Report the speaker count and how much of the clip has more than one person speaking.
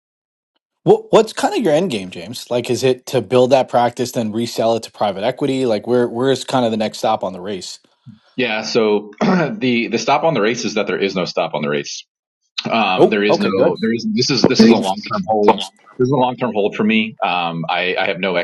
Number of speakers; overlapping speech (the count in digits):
2, about 4%